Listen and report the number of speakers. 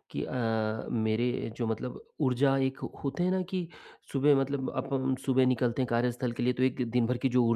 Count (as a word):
one